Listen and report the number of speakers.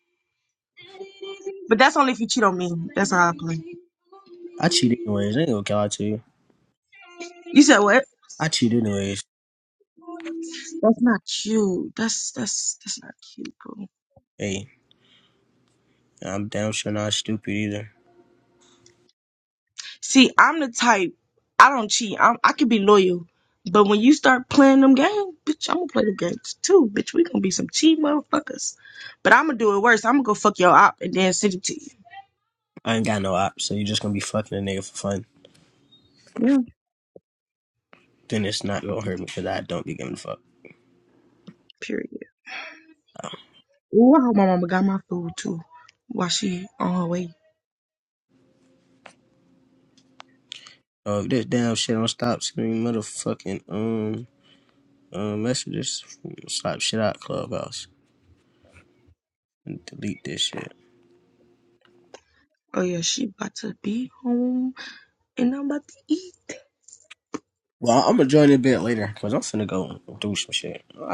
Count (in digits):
2